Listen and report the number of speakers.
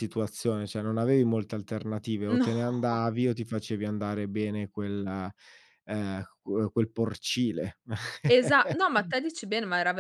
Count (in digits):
2